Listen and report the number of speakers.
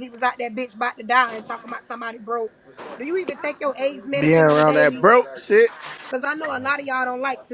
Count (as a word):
two